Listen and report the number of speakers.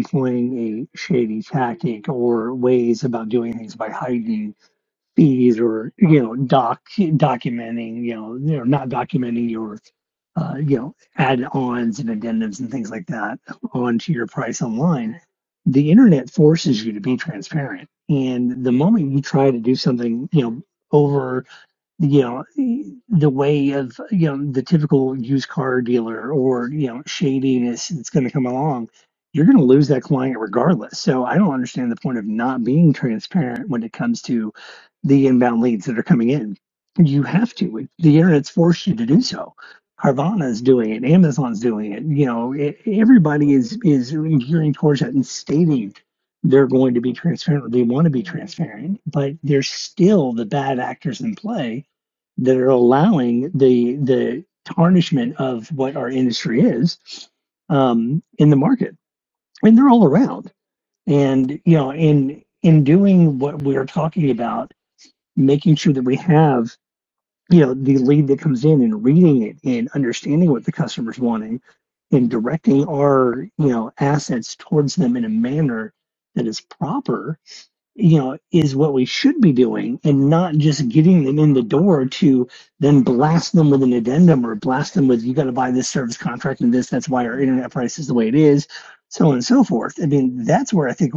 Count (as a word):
one